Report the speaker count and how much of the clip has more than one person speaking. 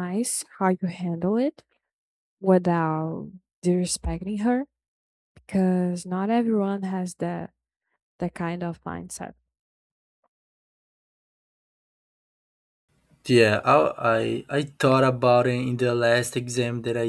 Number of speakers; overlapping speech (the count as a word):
two, no overlap